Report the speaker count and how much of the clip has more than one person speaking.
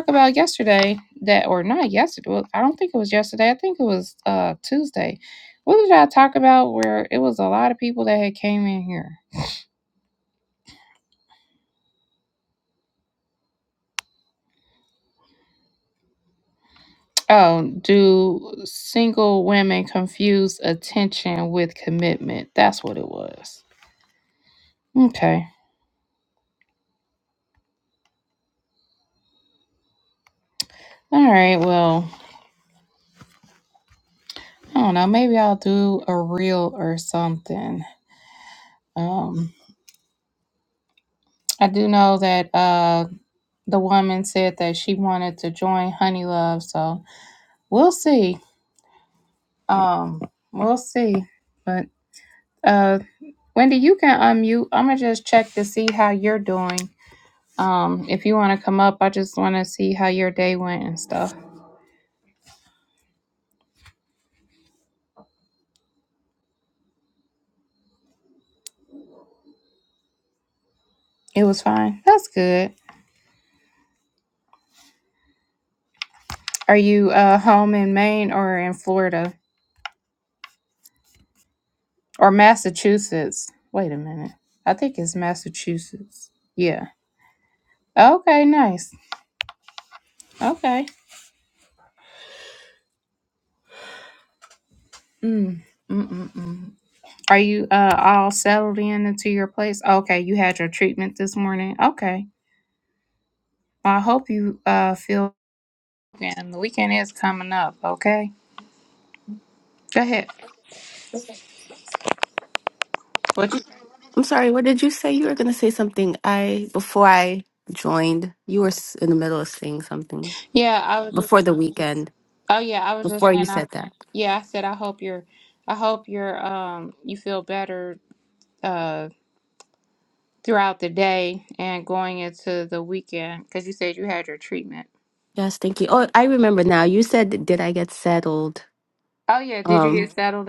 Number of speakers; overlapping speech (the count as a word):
two, about 1%